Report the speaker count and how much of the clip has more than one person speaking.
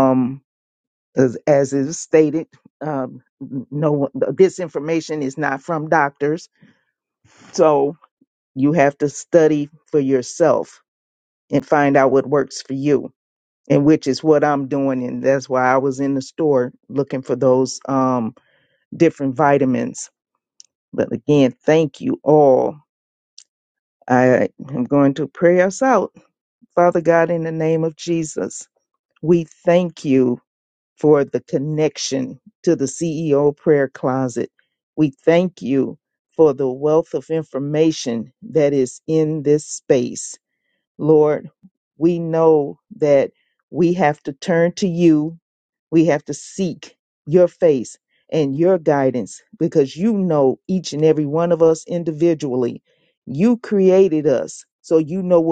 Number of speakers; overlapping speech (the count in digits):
1, no overlap